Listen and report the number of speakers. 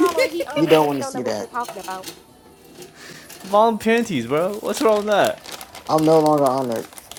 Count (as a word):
three